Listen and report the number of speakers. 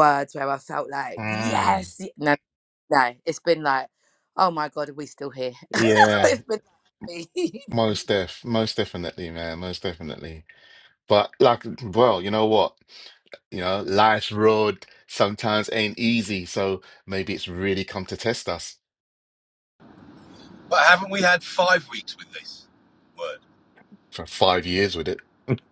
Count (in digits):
3